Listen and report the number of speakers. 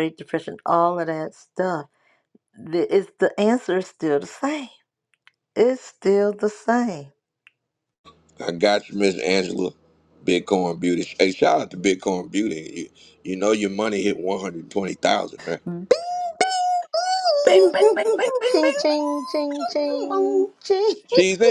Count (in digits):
3